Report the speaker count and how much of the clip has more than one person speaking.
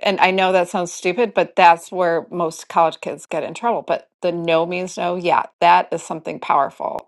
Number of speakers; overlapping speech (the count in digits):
1, no overlap